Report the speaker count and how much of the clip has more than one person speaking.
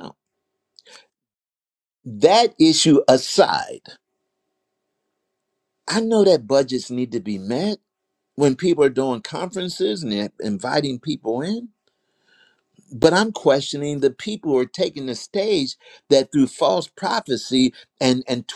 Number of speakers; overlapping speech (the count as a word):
one, no overlap